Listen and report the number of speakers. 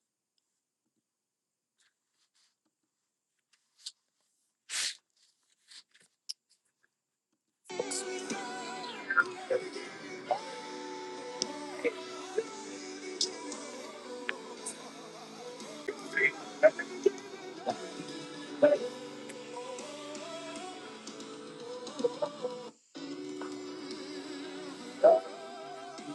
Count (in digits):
0